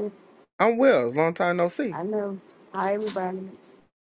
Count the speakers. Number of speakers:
two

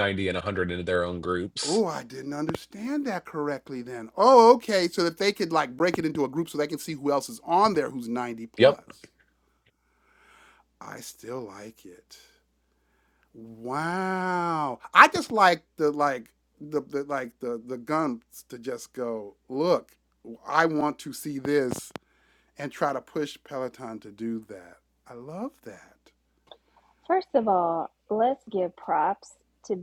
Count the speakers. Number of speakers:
three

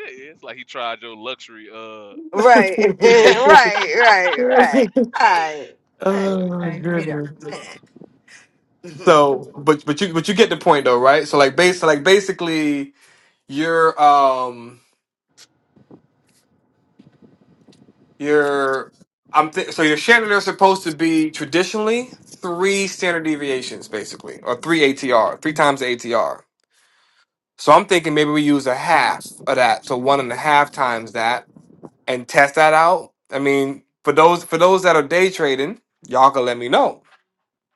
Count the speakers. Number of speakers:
three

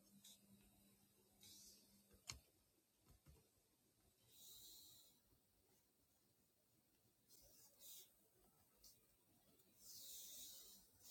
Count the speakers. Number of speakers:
zero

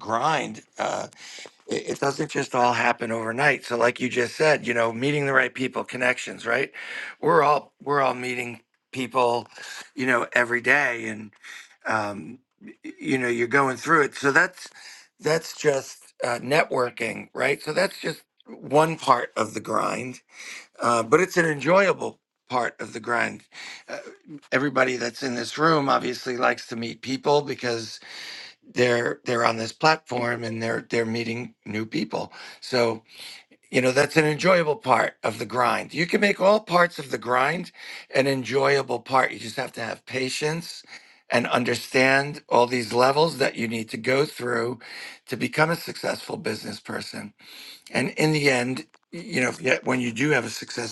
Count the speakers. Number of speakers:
one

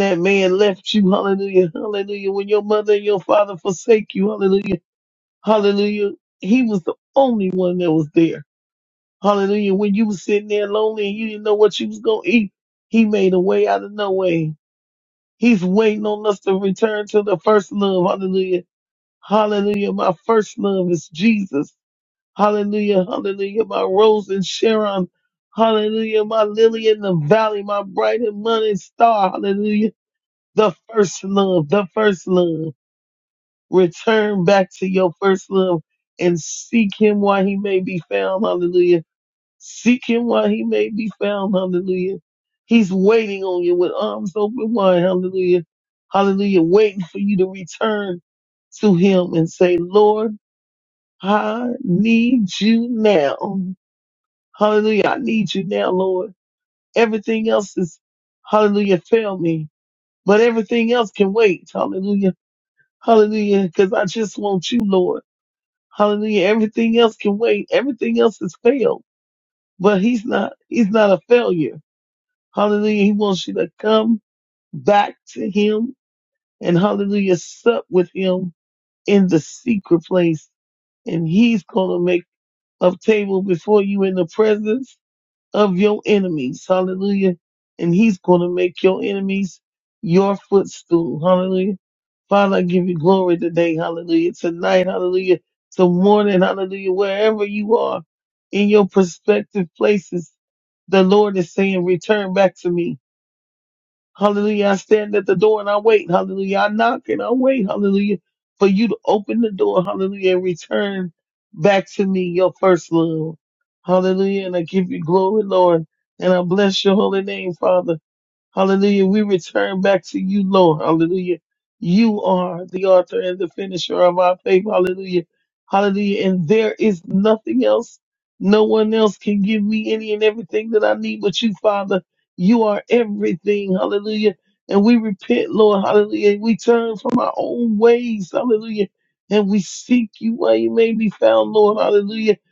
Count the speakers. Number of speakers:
one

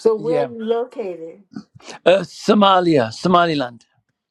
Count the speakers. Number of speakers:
two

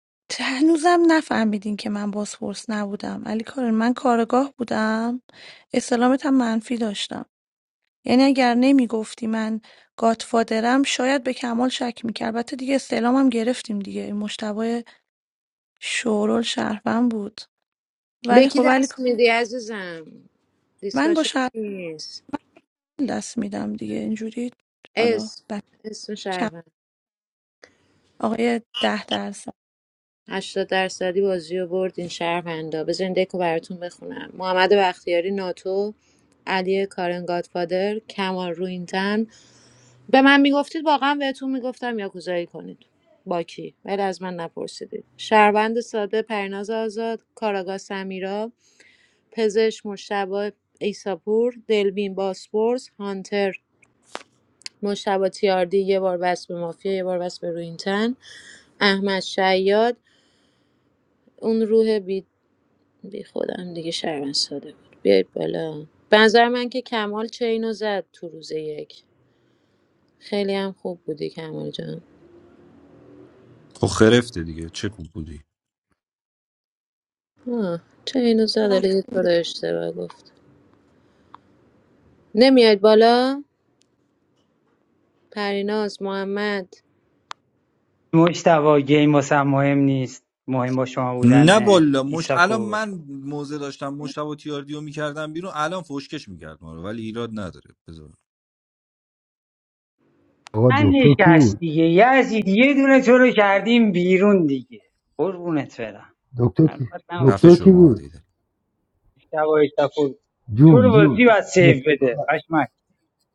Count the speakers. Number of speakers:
five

